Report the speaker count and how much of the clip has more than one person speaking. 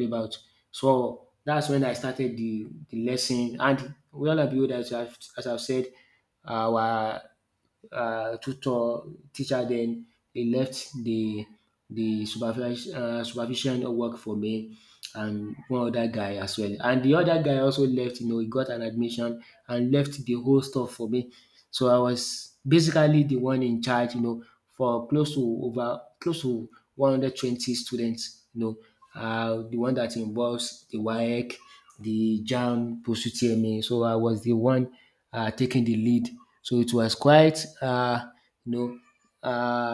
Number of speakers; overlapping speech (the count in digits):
1, no overlap